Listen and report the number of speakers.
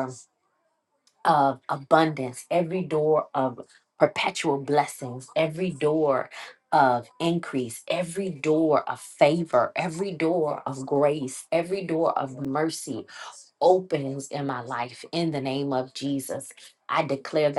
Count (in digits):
1